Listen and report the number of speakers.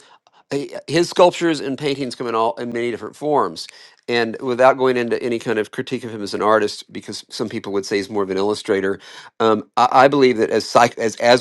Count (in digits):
1